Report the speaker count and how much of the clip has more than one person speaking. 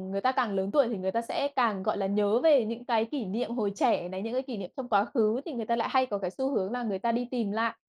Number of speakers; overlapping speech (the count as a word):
one, no overlap